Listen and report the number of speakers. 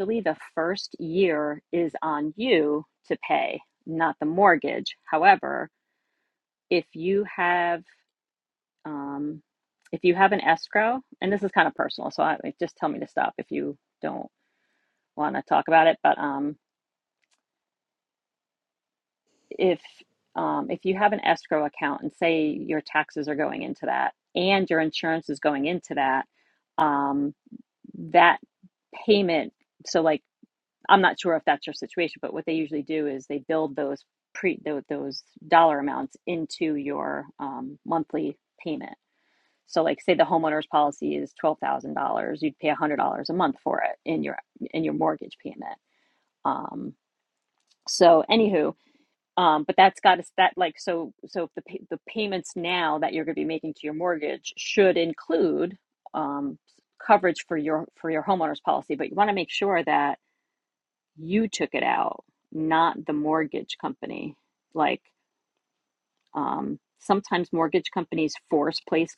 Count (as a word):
one